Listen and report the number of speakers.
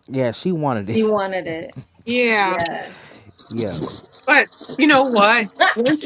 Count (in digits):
3